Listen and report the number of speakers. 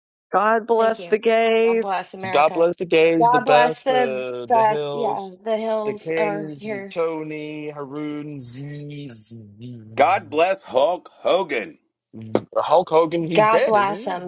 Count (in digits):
4